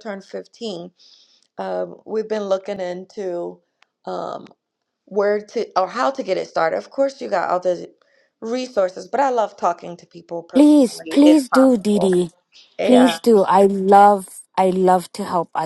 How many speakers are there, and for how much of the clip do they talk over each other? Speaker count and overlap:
two, about 13%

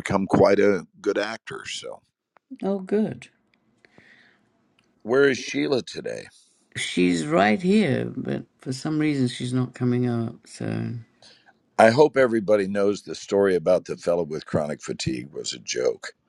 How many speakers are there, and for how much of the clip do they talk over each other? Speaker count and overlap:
two, no overlap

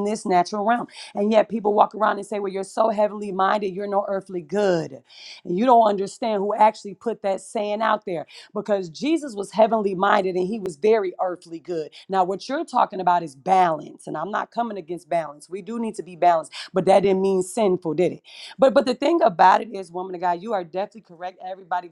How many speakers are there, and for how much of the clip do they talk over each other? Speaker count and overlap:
one, no overlap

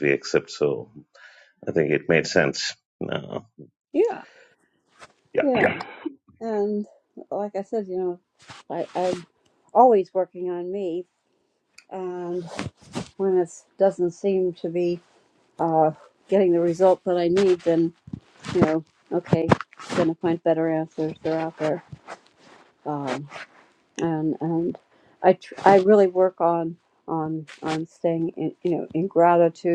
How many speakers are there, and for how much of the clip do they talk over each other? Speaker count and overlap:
two, about 1%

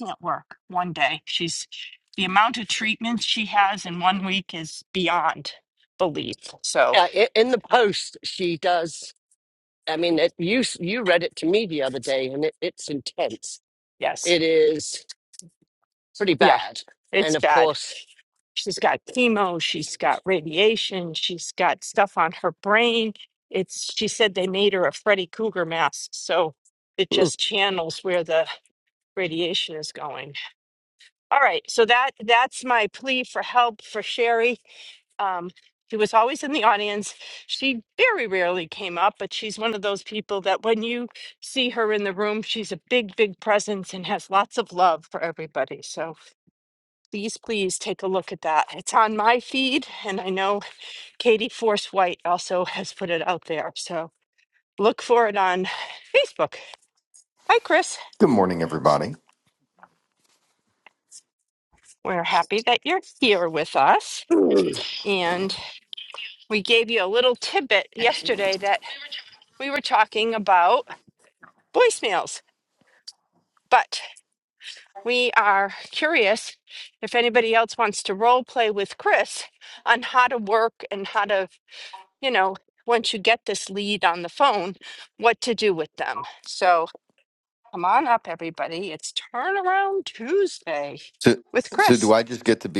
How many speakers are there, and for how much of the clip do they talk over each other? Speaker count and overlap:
three, about 1%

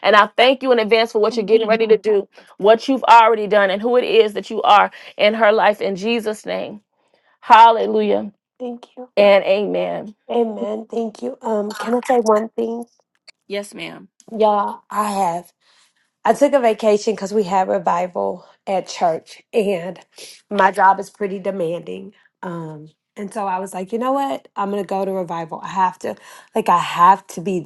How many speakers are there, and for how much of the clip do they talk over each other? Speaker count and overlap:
two, about 2%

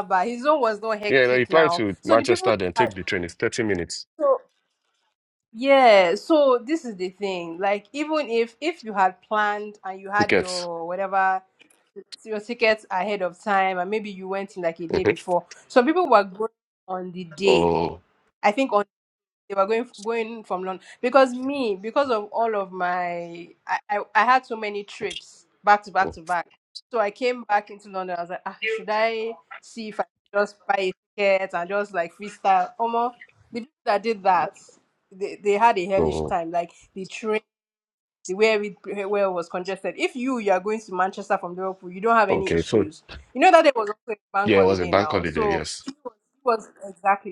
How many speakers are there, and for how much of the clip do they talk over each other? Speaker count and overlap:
two, about 11%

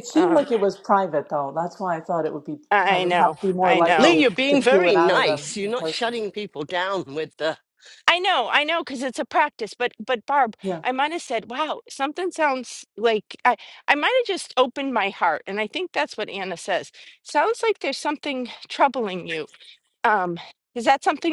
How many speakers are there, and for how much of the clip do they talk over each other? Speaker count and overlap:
three, about 18%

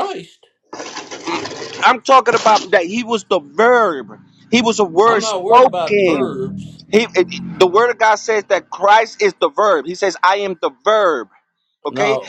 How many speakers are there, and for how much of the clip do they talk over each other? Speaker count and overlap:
two, about 13%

